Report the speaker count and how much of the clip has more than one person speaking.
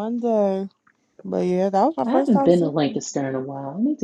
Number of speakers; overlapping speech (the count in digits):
2, about 22%